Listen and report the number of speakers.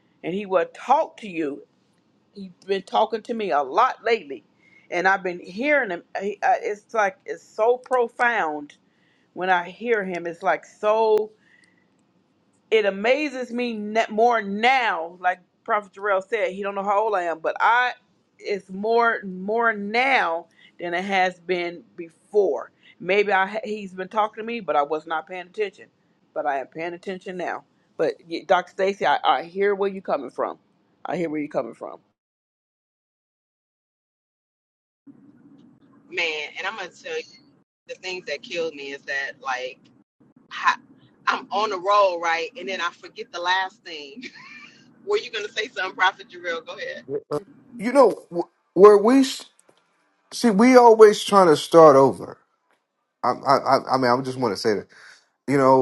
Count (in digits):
3